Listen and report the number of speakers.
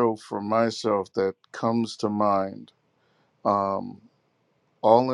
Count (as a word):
one